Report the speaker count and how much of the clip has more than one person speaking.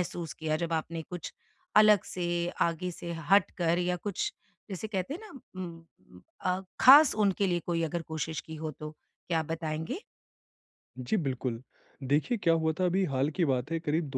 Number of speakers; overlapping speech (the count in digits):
2, no overlap